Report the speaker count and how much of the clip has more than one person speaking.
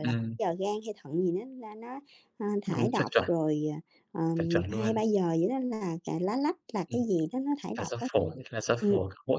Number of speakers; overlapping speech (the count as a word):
two, about 23%